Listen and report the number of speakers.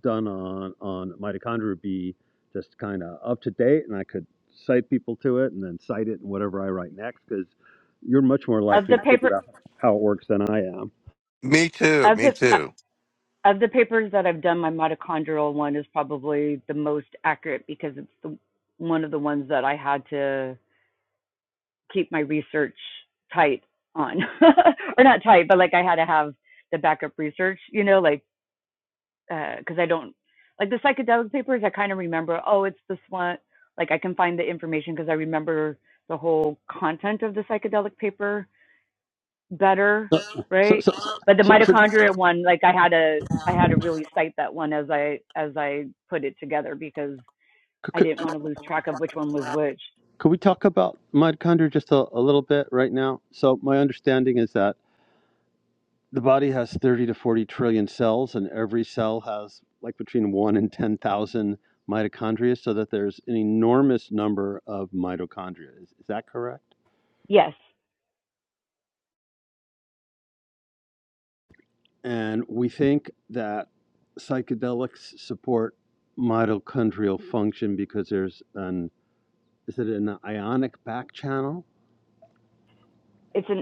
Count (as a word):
three